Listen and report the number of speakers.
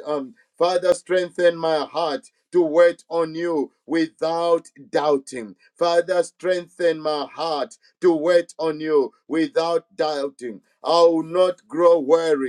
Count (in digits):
1